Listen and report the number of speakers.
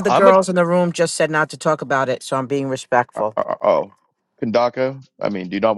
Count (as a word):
two